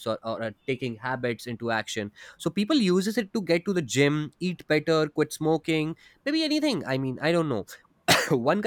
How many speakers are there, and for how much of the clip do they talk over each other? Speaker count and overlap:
one, no overlap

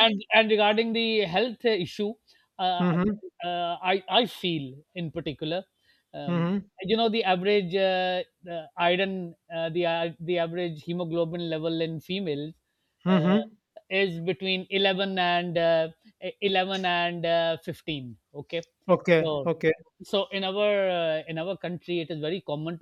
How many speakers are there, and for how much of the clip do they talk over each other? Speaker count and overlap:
two, about 5%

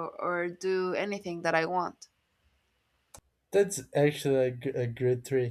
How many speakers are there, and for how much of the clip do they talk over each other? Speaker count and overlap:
two, no overlap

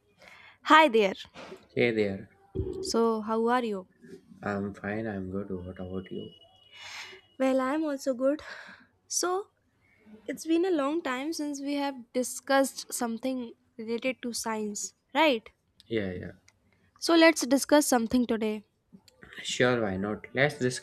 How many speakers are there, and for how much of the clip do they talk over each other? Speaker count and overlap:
two, no overlap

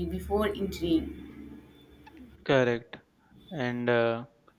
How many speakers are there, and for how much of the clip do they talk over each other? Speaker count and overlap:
two, no overlap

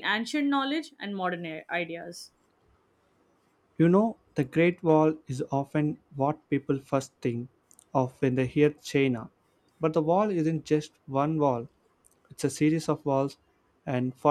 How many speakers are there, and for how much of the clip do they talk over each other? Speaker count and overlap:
two, no overlap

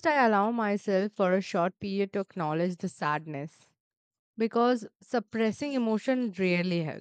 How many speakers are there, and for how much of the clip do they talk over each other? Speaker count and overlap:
one, no overlap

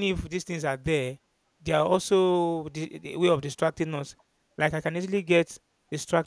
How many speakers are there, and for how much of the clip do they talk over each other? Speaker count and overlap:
one, no overlap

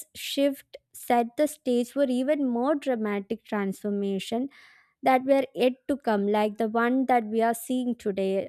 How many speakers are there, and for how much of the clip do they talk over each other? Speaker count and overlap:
one, no overlap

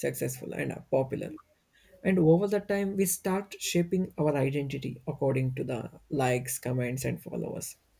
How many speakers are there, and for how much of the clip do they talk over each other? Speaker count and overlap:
one, no overlap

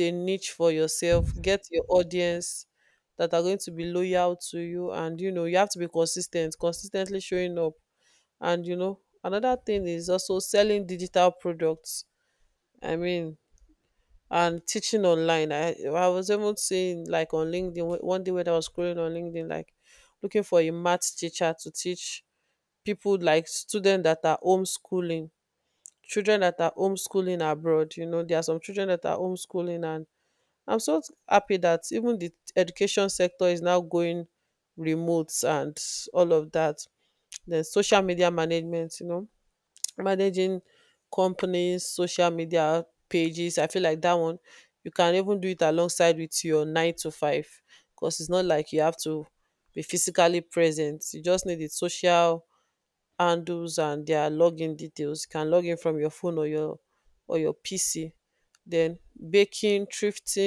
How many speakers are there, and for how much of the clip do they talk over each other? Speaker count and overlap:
one, no overlap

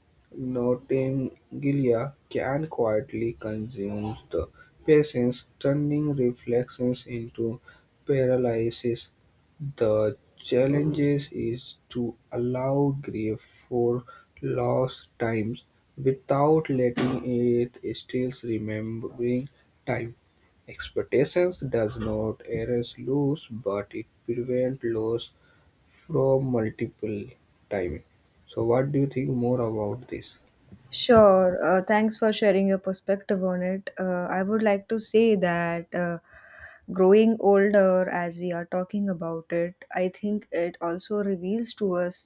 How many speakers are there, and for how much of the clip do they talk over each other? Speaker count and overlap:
two, no overlap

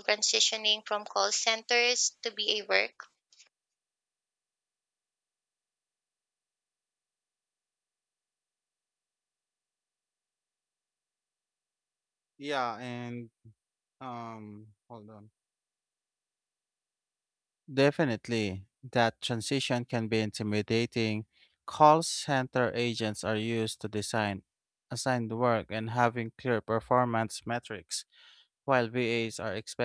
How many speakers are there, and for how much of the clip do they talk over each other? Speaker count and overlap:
two, no overlap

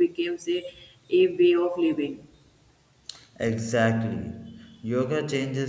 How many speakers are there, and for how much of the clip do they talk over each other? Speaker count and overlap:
two, no overlap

